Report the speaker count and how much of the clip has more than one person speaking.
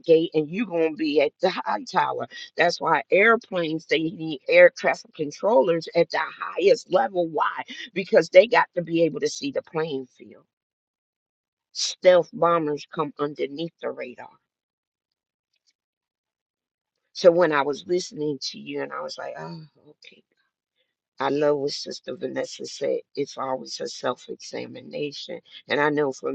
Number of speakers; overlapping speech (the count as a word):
one, no overlap